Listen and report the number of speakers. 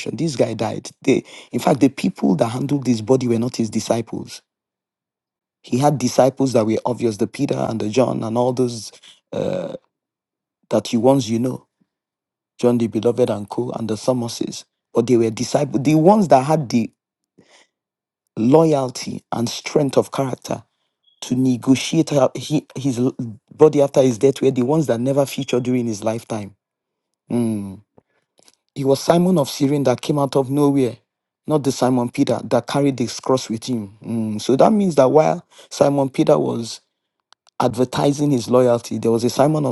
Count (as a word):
one